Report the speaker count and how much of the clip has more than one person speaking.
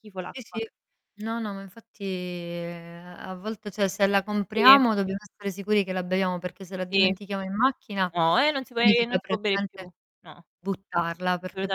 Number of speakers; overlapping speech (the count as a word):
two, about 17%